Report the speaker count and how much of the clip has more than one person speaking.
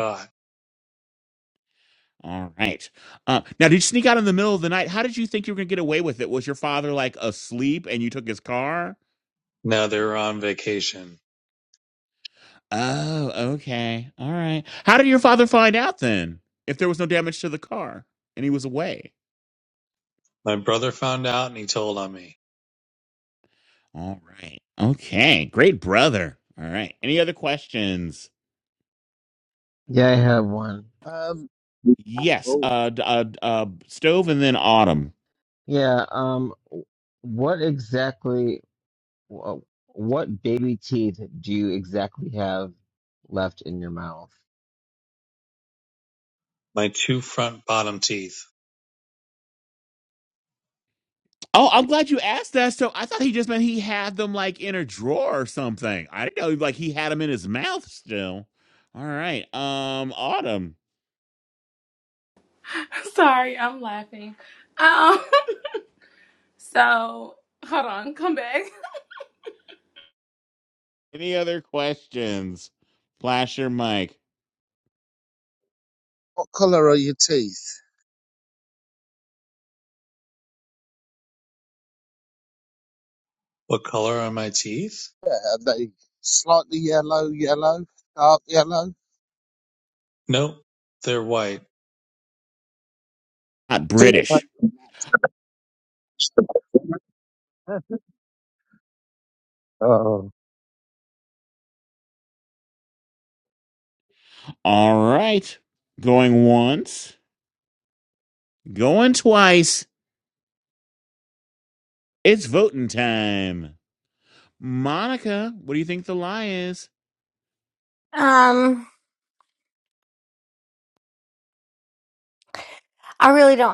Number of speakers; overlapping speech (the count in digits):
6, under 1%